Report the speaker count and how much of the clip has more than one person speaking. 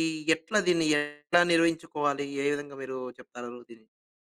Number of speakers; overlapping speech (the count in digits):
1, no overlap